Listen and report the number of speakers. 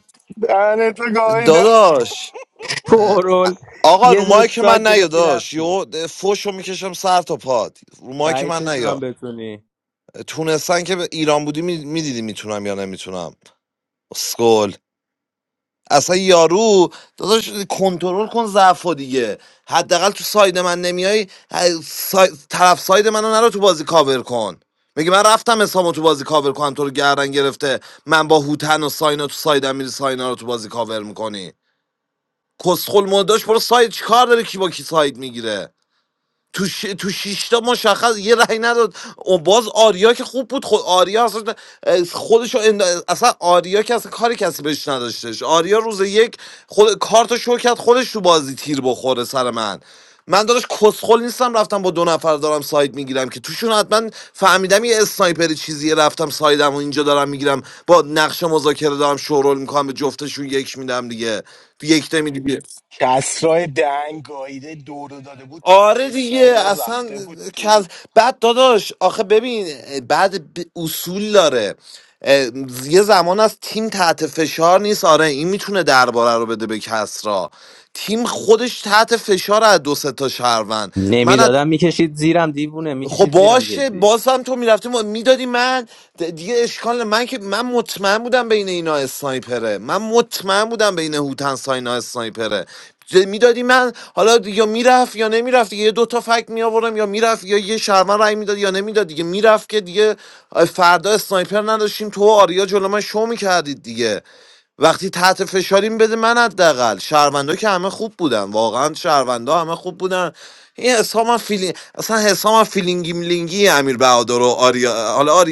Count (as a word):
three